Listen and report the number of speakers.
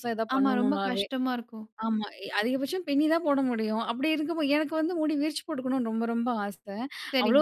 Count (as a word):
two